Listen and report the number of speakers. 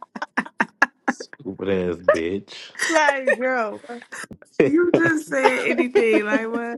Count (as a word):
three